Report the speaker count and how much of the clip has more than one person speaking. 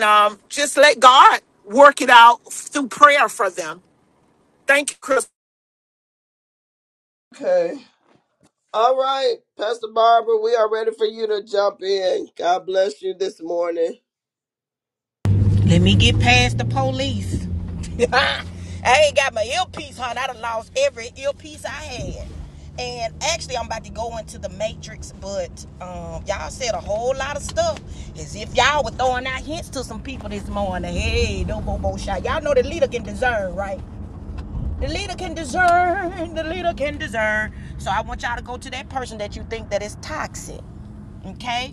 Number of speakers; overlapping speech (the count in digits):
3, no overlap